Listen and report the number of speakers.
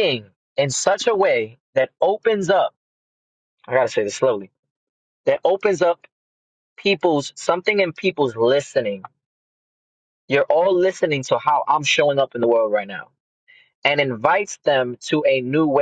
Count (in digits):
1